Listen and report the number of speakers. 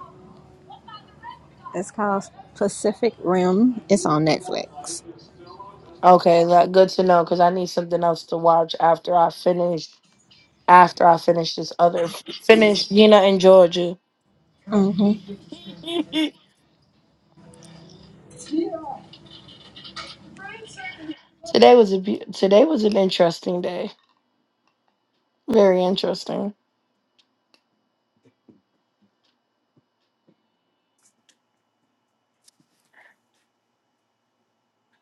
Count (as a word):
two